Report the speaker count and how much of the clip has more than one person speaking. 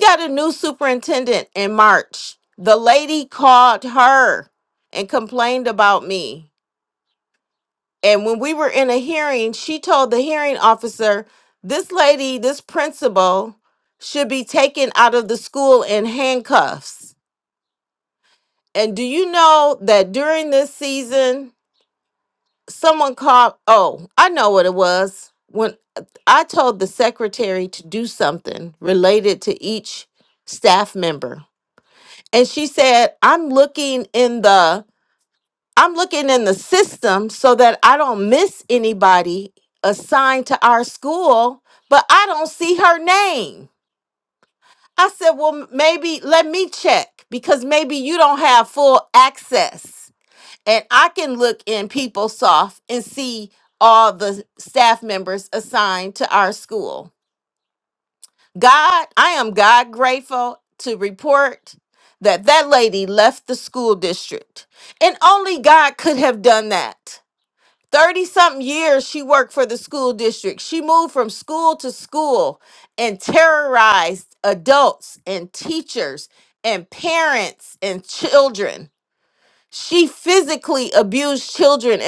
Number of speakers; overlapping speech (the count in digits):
1, no overlap